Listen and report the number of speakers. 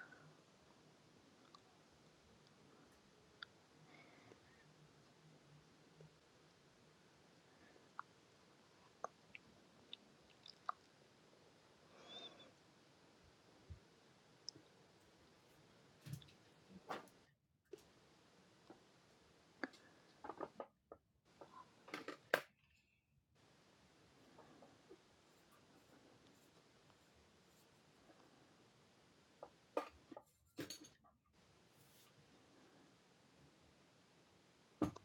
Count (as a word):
zero